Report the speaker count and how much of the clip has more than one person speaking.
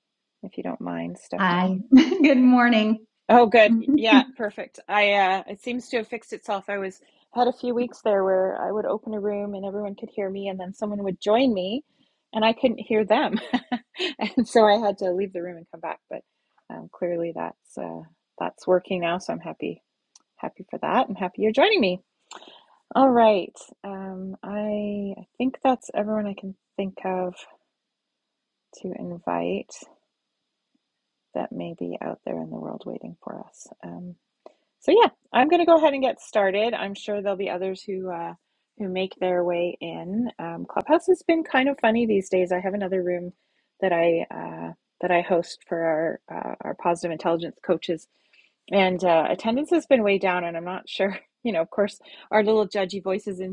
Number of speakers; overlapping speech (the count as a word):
two, about 1%